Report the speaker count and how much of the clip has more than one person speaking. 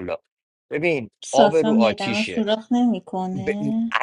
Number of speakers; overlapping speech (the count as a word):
two, about 32%